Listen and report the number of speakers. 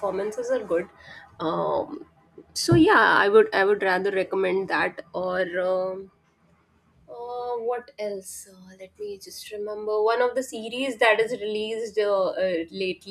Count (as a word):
one